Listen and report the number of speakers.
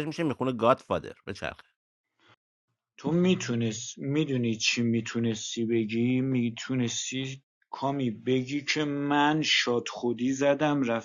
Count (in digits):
2